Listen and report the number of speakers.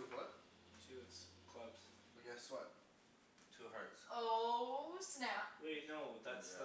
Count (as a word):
three